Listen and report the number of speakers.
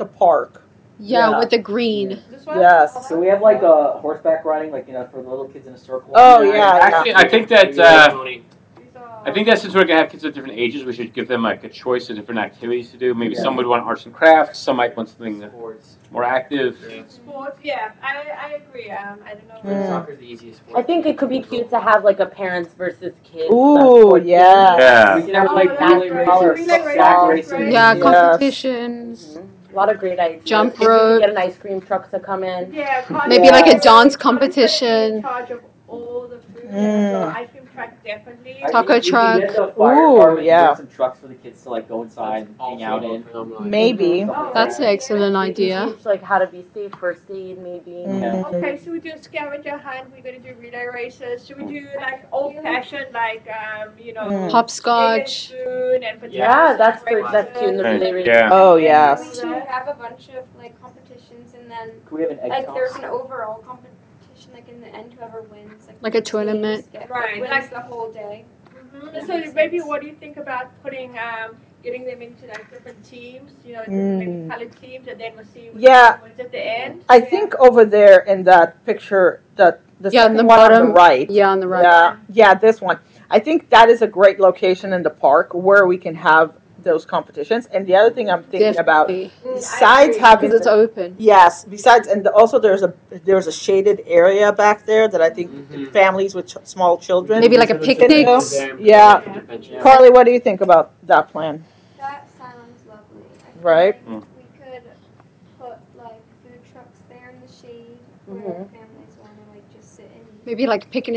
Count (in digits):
8